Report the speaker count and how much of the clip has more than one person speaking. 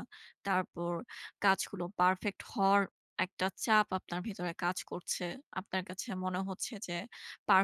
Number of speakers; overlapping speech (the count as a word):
one, no overlap